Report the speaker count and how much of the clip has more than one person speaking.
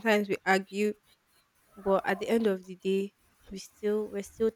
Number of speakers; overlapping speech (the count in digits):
1, no overlap